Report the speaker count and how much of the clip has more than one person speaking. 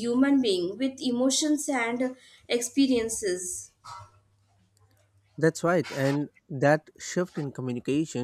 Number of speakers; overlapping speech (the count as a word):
two, no overlap